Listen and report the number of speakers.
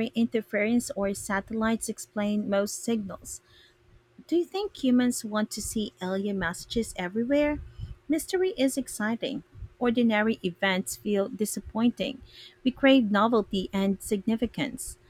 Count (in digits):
1